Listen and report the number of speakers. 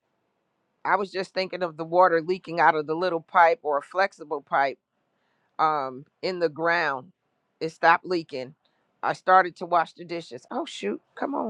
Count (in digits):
1